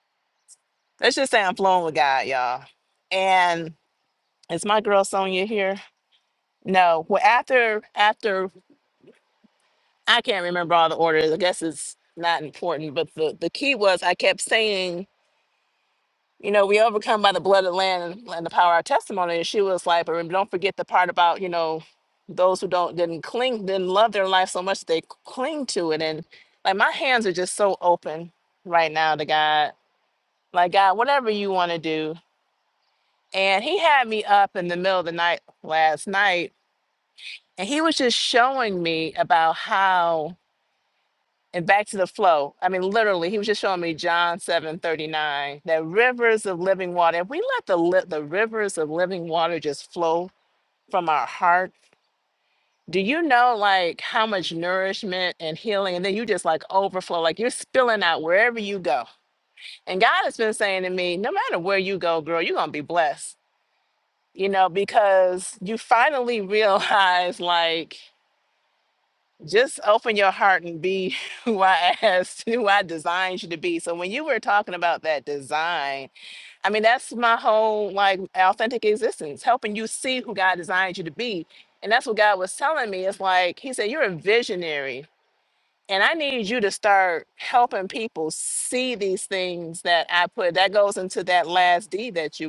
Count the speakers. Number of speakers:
1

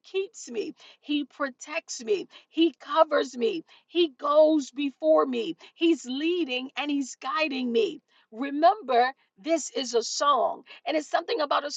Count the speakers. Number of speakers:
1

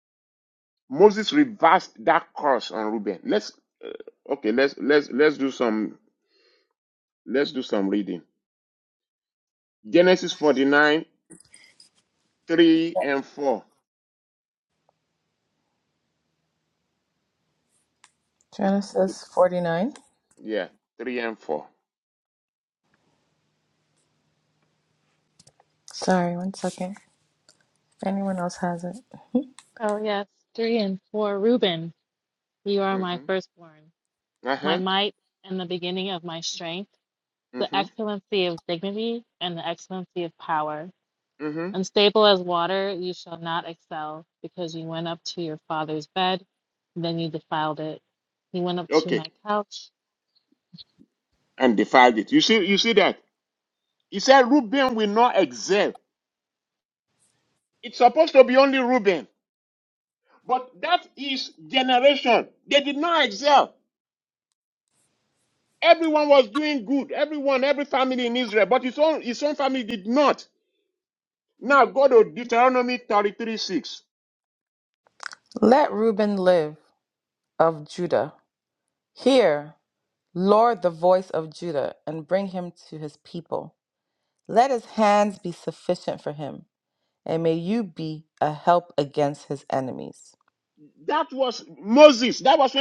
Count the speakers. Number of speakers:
3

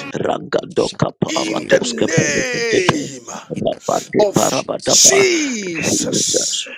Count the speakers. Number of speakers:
3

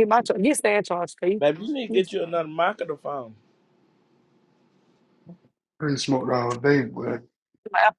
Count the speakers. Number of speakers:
3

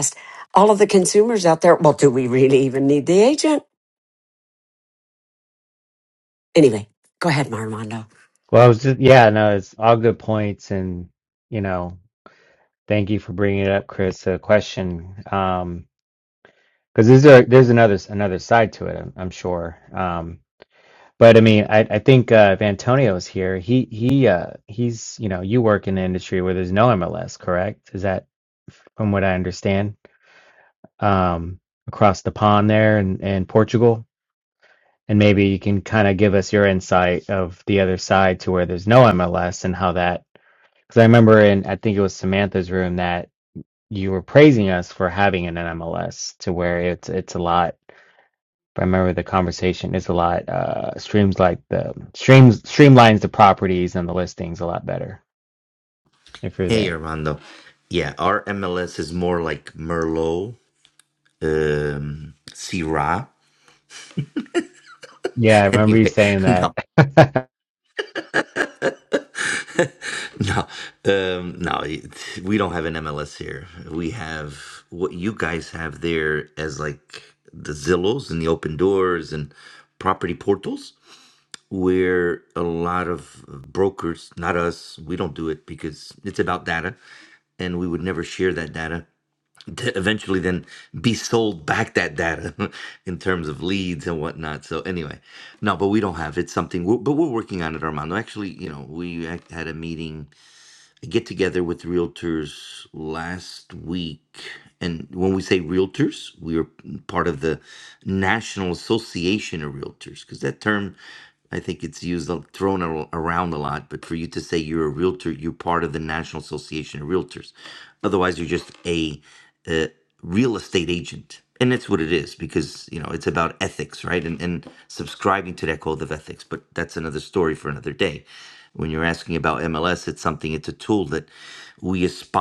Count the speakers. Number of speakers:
3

